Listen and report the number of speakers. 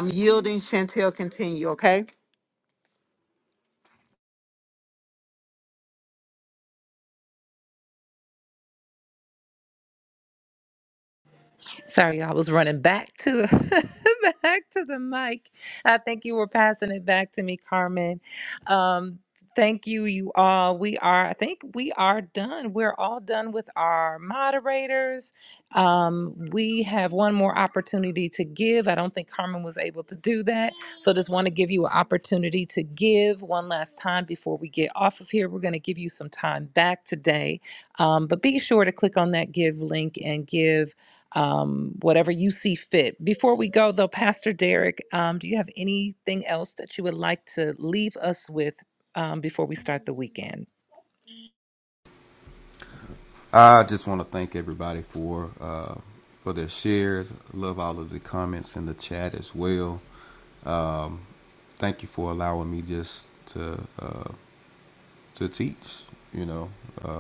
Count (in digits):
3